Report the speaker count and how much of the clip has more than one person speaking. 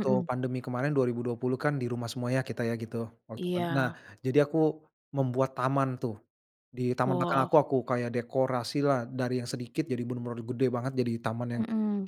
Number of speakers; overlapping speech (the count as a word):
two, about 11%